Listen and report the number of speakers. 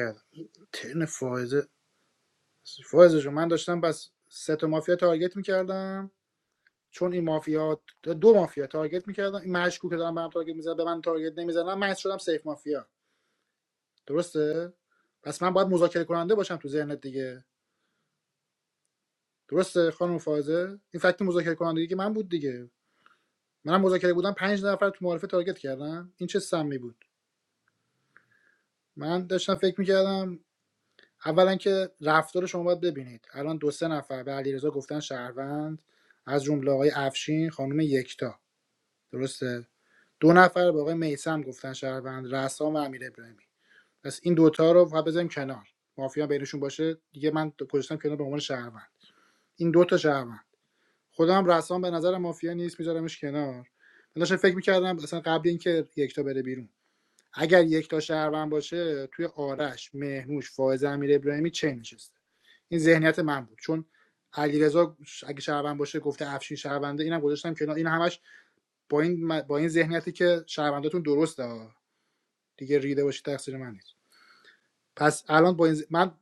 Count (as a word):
one